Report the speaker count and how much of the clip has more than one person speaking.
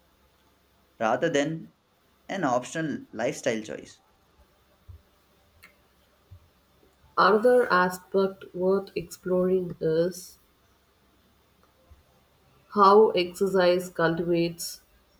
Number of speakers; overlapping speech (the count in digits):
2, no overlap